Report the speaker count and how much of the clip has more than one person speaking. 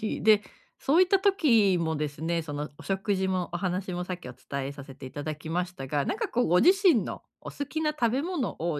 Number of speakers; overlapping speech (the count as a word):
one, no overlap